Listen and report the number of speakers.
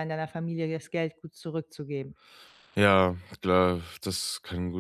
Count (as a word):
two